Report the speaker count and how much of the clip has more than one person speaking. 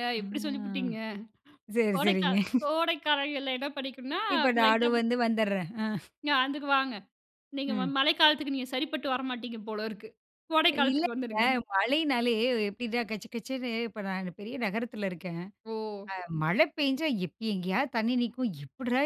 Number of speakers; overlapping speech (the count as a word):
two, about 7%